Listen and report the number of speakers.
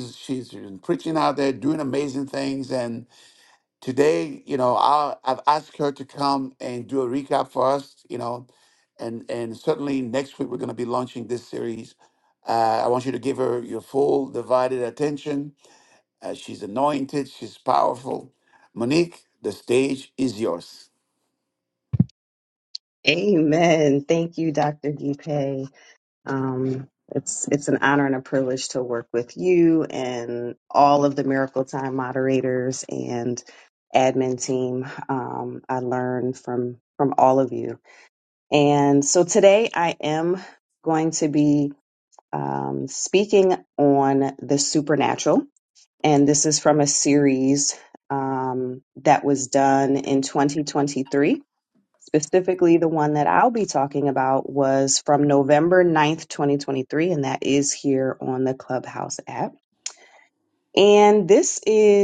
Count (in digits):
2